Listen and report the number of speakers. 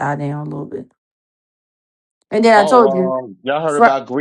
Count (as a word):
two